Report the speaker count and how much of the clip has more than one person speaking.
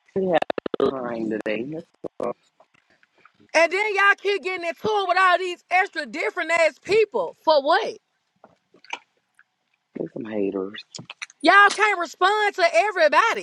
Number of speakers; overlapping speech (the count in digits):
2, no overlap